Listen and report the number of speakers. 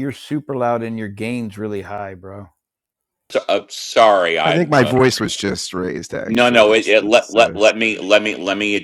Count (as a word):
three